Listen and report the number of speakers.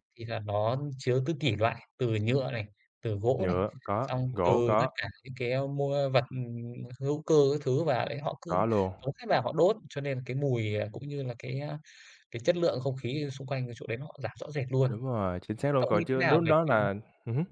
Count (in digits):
2